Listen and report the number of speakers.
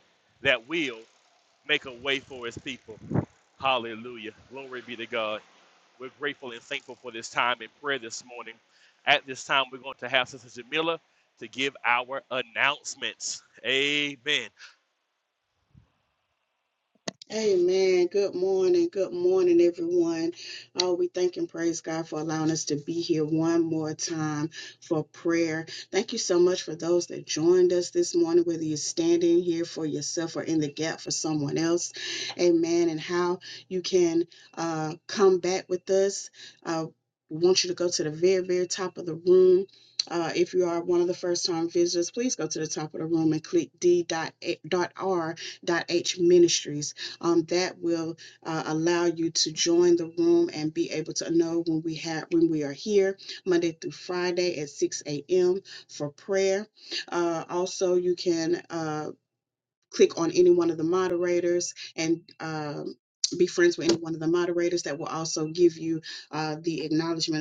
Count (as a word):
two